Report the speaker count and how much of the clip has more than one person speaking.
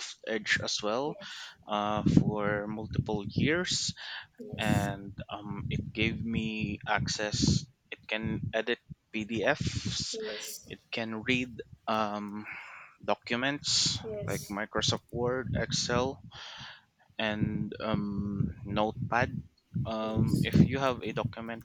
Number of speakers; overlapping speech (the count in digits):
2, about 3%